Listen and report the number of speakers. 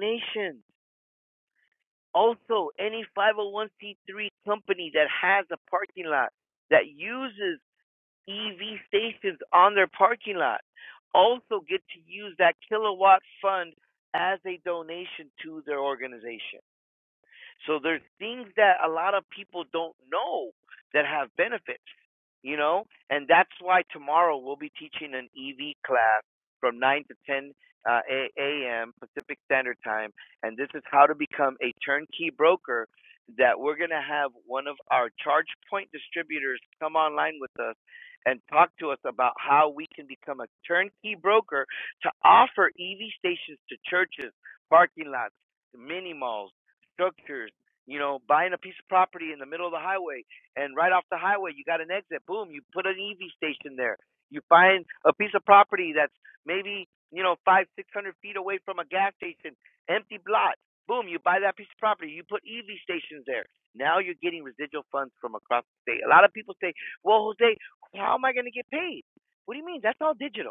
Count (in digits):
1